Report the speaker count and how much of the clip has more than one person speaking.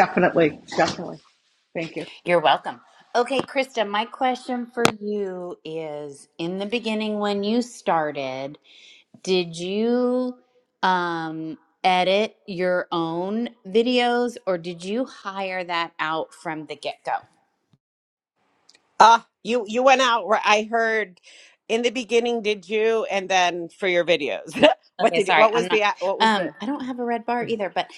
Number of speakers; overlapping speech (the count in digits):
3, about 4%